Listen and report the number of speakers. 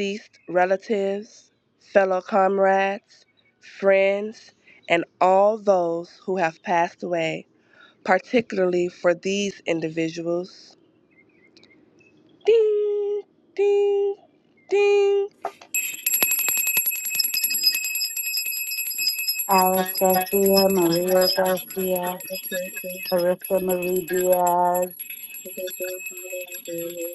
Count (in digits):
3